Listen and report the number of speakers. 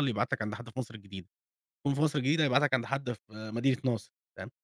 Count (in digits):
1